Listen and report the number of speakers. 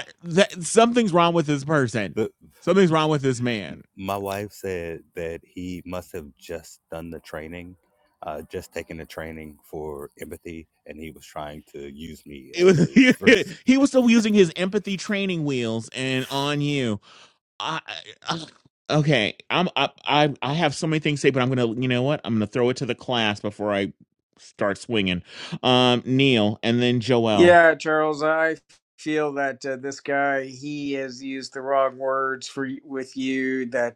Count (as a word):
three